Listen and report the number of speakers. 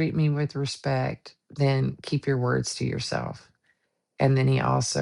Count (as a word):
one